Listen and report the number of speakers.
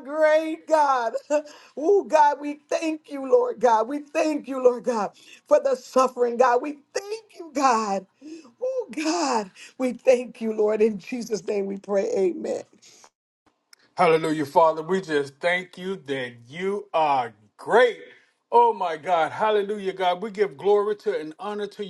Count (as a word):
two